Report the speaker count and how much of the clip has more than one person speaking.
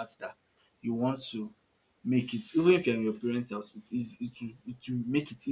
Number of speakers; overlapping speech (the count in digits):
1, no overlap